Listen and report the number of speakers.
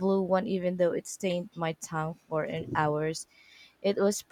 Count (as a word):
one